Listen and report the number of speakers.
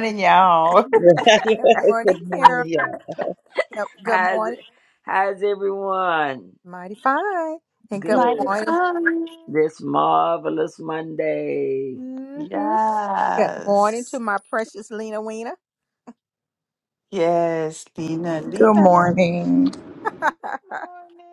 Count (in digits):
5